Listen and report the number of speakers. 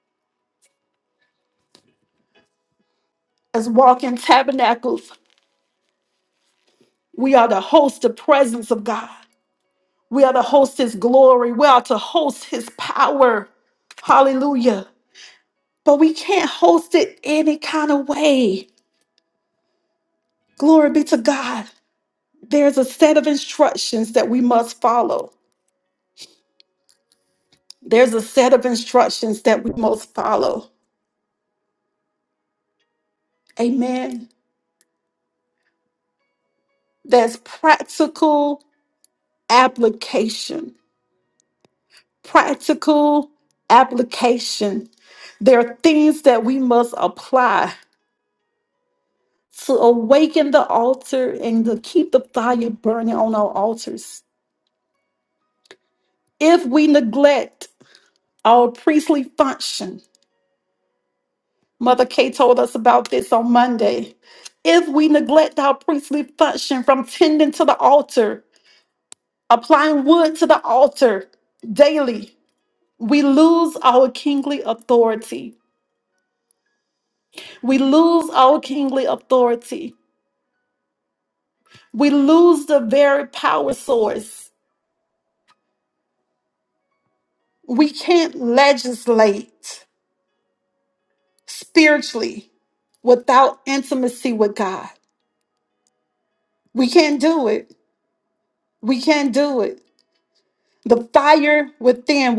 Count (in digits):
1